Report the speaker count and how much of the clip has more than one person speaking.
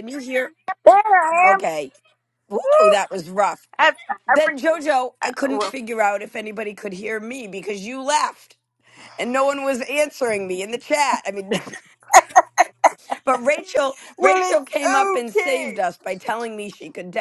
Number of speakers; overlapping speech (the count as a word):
two, about 17%